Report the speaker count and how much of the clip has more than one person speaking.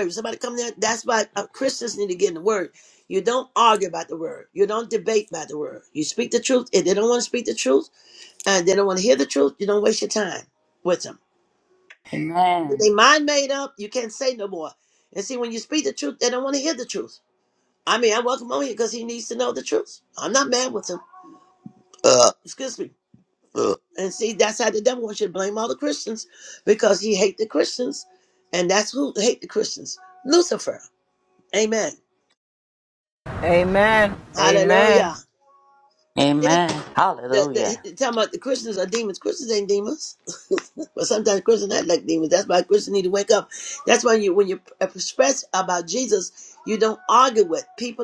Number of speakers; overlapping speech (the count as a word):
three, about 3%